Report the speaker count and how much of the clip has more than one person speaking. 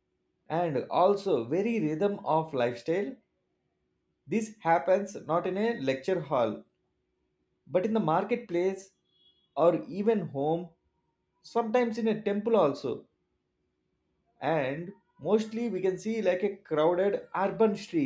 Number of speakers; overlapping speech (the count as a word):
one, no overlap